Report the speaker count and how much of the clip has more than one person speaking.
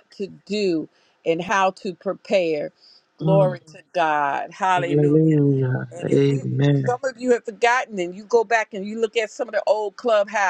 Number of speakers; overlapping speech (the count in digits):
2, about 14%